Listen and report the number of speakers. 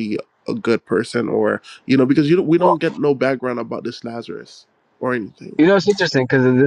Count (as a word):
two